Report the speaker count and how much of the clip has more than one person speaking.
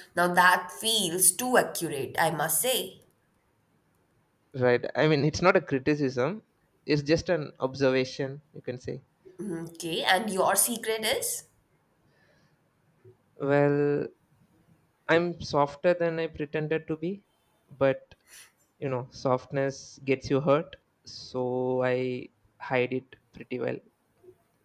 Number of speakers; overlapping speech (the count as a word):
two, no overlap